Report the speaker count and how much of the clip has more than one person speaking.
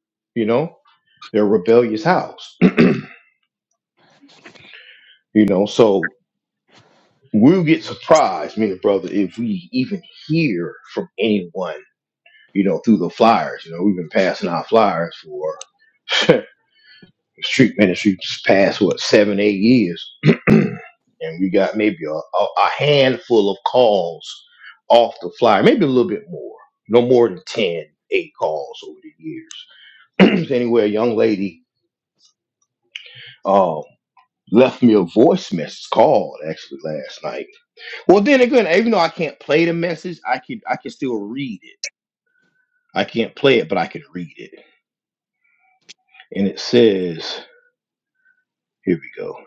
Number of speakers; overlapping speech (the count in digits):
1, no overlap